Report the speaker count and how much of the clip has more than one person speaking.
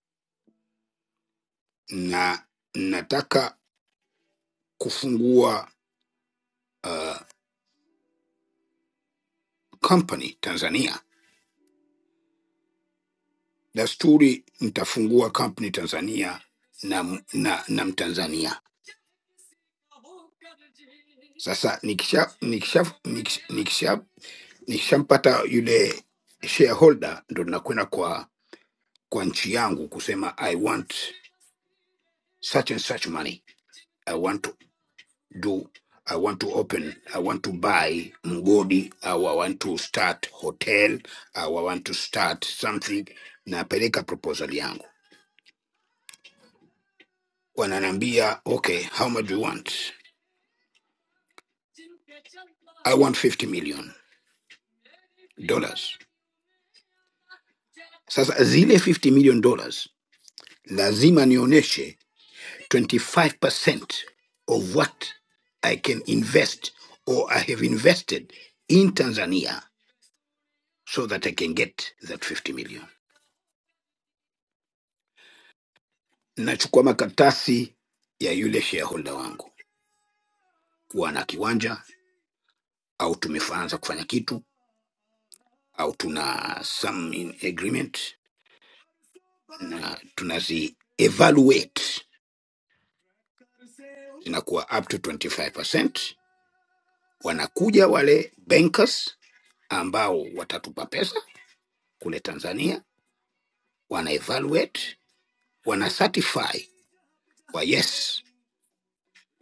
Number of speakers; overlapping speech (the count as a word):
one, no overlap